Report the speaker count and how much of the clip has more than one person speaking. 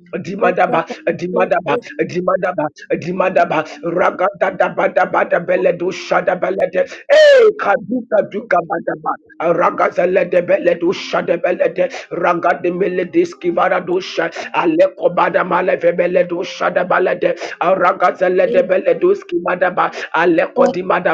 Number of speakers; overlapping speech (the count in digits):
1, no overlap